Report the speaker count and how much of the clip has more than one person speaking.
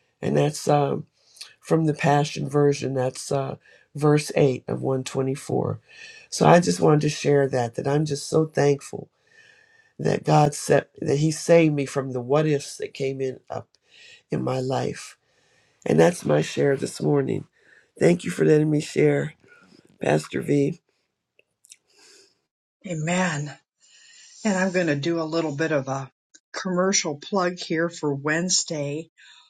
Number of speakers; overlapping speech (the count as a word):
two, no overlap